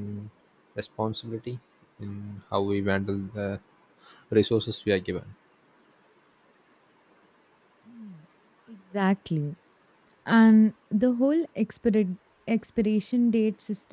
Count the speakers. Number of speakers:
two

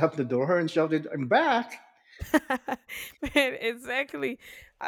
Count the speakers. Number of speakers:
two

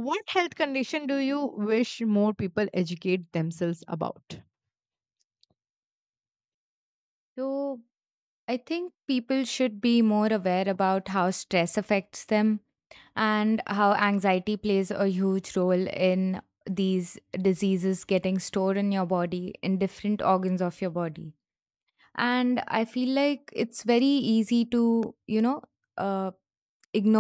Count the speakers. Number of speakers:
two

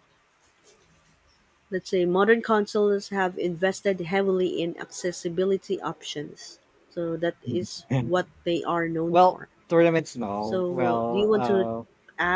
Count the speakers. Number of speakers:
two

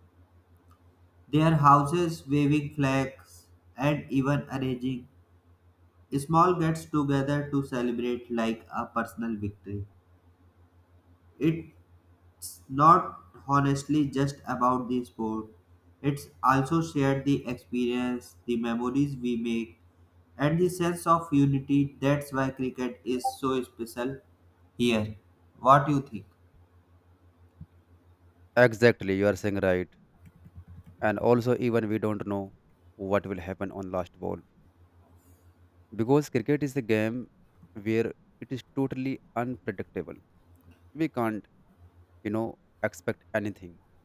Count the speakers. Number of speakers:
two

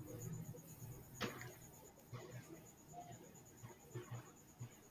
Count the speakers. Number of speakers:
zero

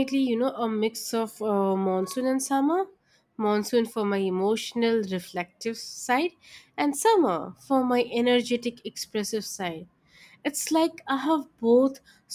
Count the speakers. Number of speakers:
one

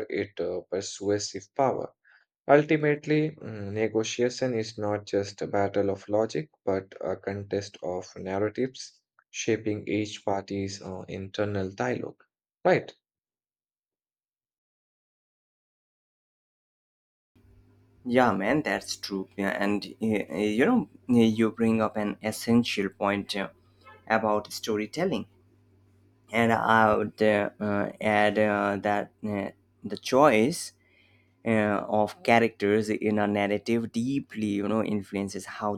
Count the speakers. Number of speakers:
two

